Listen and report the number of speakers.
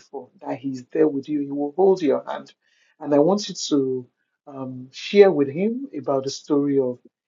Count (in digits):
1